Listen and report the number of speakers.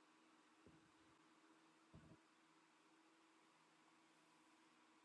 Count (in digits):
0